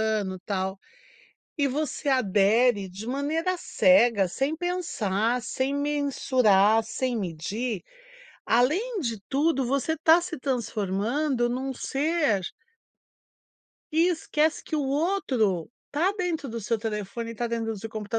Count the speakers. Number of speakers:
one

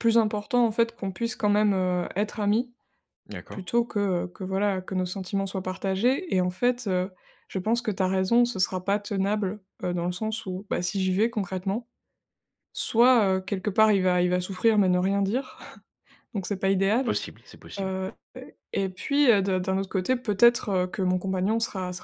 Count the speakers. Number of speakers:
two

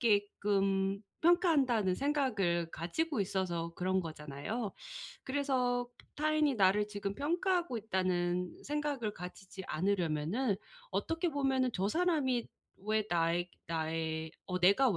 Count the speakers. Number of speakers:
one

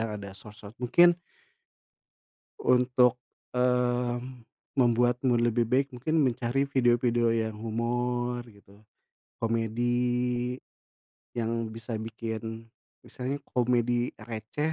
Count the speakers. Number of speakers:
one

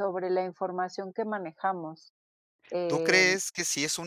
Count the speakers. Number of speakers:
two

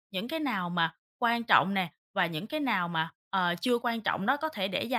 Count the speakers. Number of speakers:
one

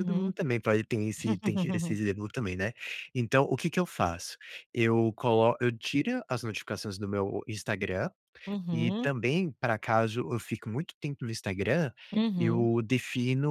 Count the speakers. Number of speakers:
two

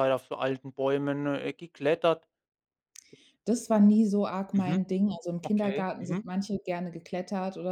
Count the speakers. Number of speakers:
two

